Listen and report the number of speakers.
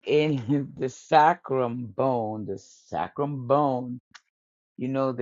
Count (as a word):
one